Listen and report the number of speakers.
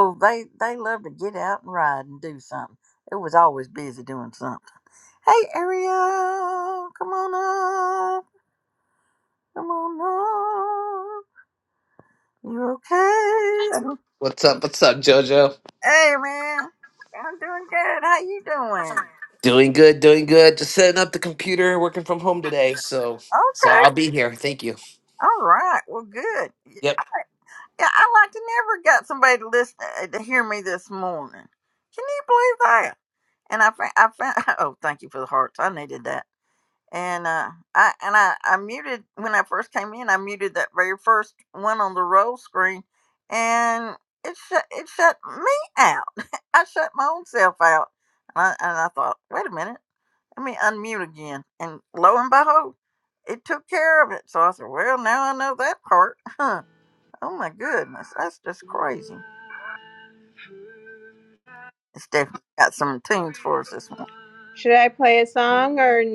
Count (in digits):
3